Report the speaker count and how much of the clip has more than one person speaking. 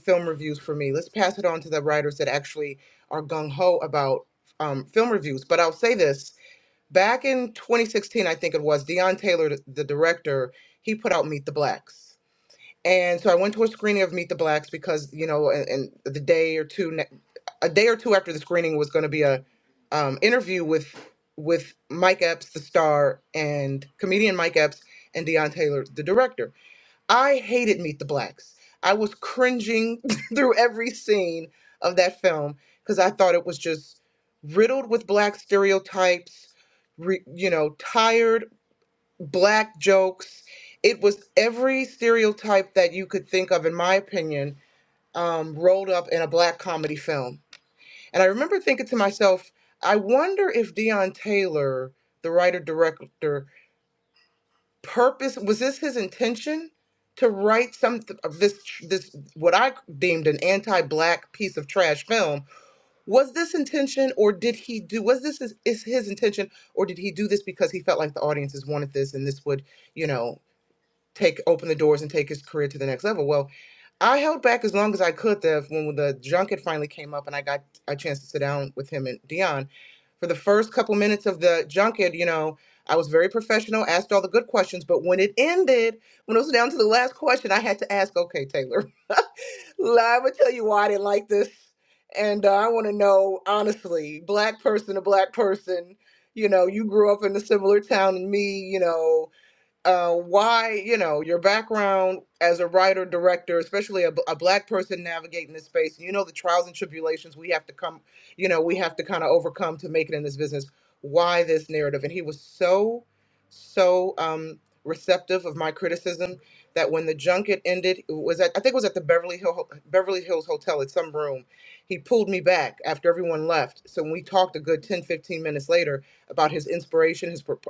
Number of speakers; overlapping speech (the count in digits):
1, no overlap